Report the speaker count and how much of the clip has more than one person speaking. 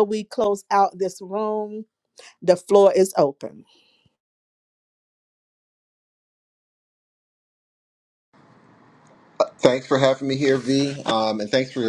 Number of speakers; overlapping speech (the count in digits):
2, no overlap